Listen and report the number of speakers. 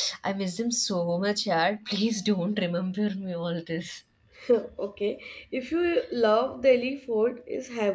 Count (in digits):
2